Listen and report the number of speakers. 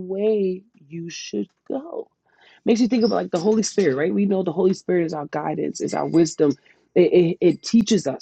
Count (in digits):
1